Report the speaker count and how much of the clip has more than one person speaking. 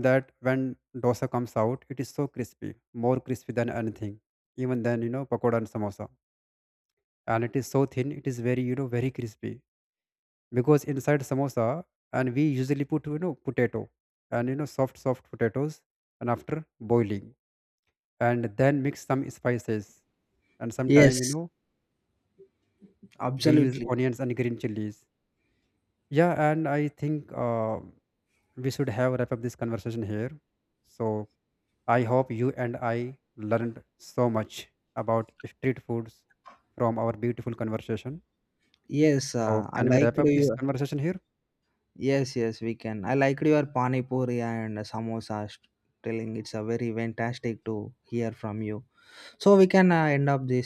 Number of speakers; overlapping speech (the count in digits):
2, about 4%